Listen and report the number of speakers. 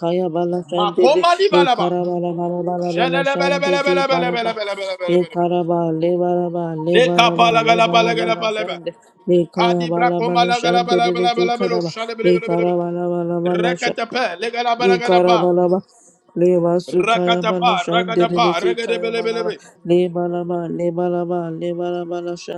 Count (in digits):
2